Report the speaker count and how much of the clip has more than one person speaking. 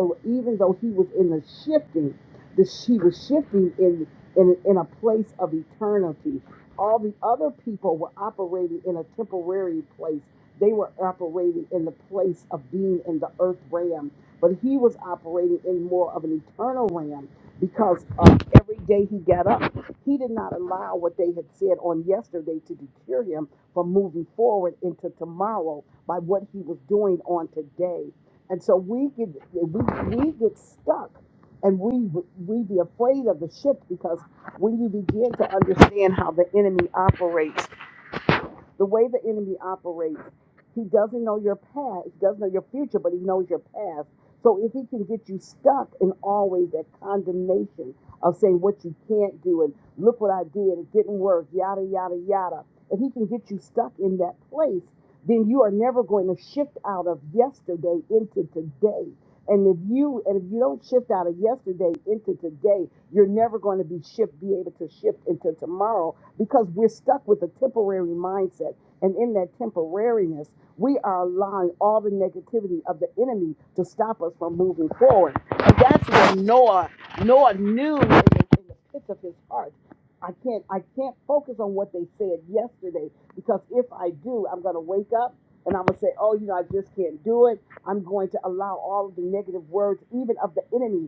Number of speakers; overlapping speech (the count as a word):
one, no overlap